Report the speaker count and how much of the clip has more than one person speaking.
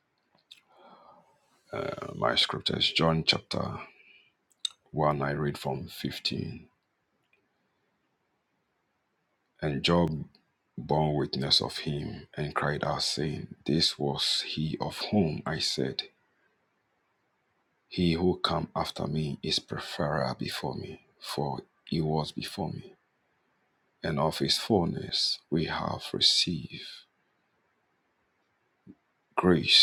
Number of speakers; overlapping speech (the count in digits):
1, no overlap